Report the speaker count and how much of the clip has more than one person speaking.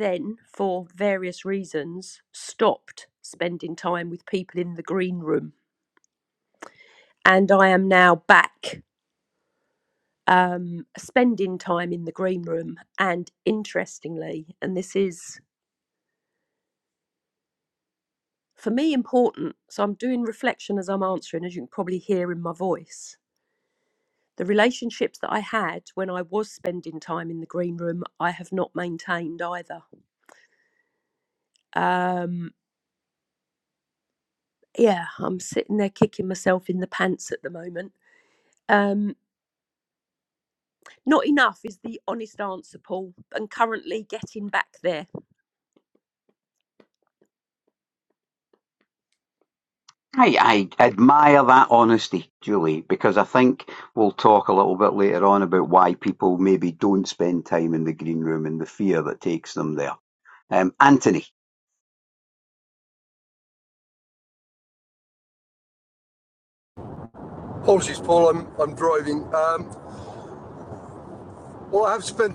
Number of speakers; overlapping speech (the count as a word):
three, no overlap